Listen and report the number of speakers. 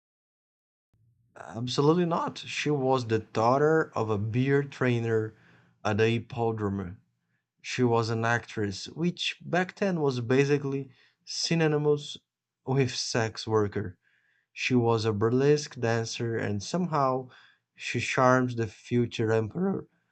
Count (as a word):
one